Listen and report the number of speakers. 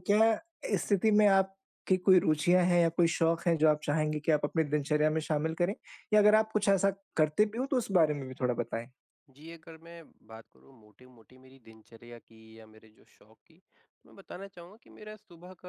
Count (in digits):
2